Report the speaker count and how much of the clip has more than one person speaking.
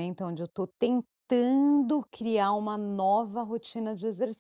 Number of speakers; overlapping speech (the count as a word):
one, no overlap